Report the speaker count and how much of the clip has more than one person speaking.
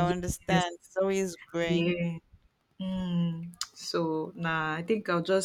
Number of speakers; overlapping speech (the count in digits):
2, about 10%